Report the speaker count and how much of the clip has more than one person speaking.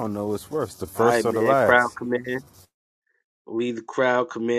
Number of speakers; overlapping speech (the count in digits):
2, about 17%